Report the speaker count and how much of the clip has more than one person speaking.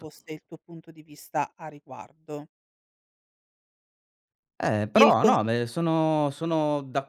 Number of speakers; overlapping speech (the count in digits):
2, about 6%